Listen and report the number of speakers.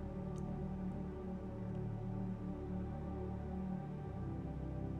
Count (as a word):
zero